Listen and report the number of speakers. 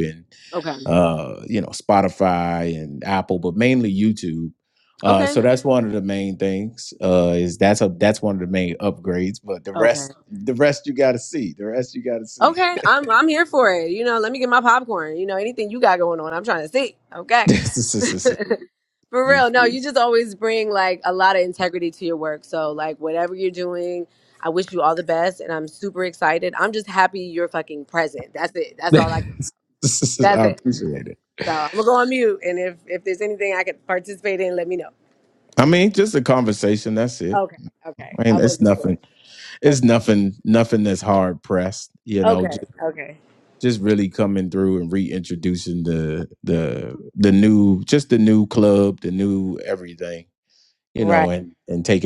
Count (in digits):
2